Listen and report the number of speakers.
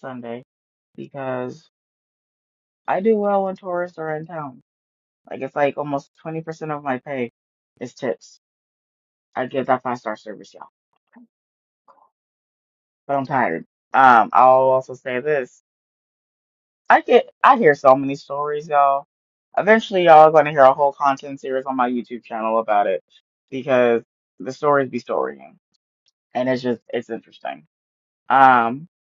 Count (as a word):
one